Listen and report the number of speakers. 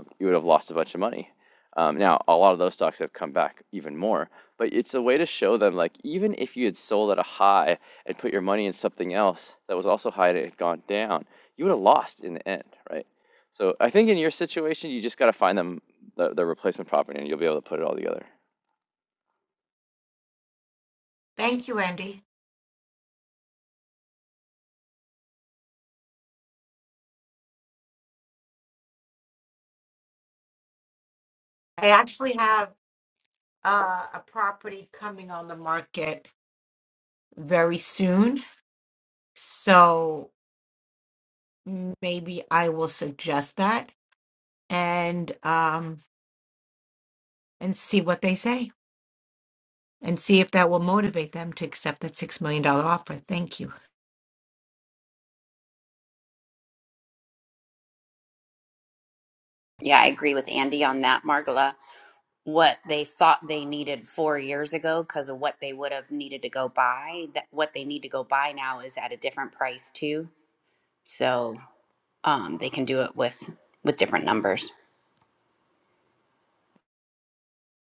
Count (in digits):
3